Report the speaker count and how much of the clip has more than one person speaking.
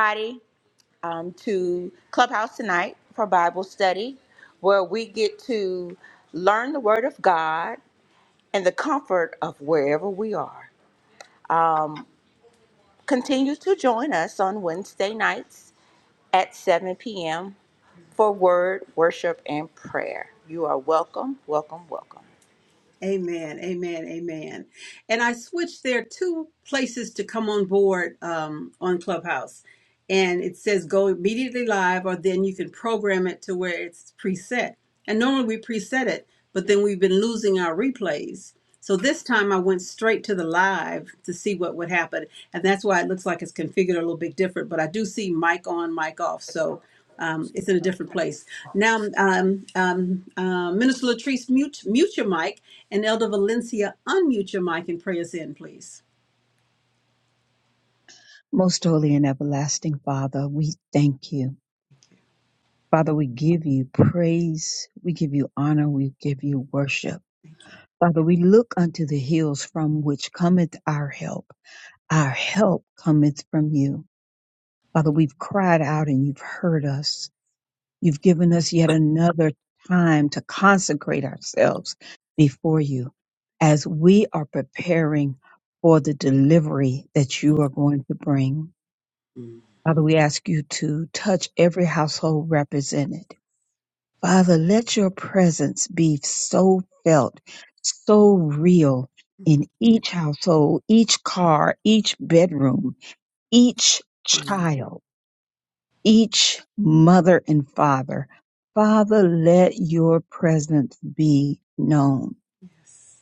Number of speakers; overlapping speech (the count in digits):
3, under 1%